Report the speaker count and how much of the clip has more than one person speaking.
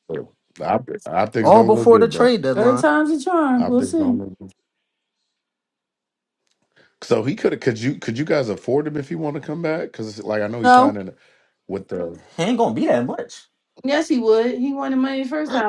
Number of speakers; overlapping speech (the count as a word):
three, about 14%